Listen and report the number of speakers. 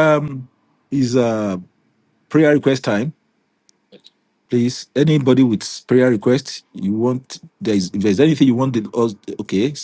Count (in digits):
1